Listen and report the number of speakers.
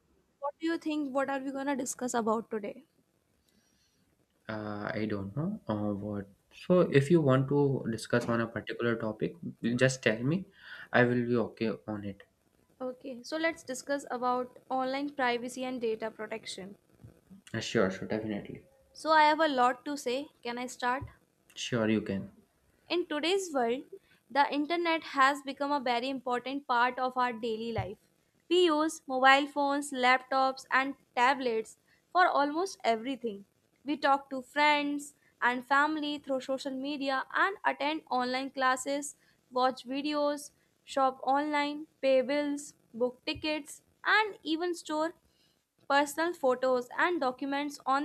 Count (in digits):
2